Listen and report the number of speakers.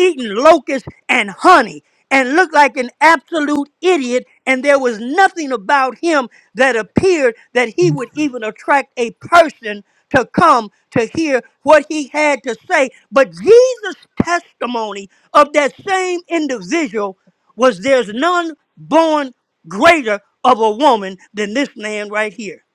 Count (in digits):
1